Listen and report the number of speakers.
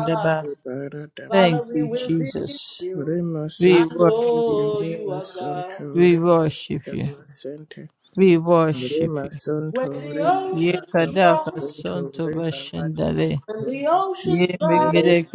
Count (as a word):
three